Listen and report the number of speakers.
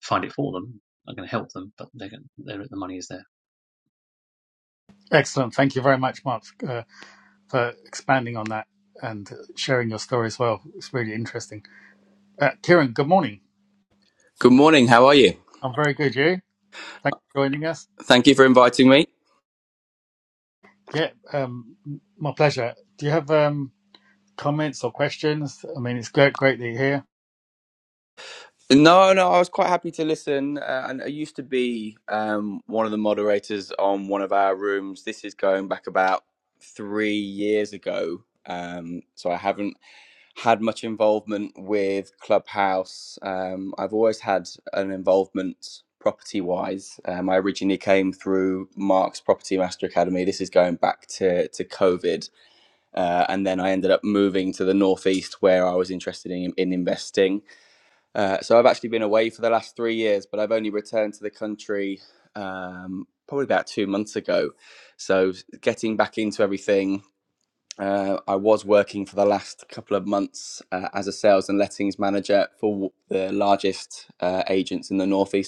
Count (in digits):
3